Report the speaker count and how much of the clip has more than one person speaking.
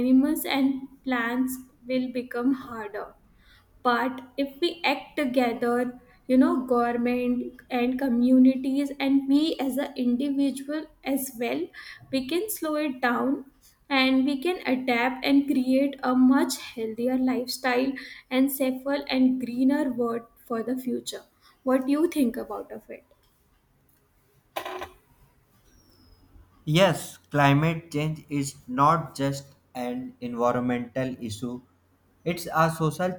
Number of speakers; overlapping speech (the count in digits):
2, no overlap